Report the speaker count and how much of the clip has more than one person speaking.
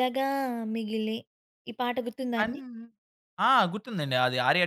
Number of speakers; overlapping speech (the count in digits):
2, about 5%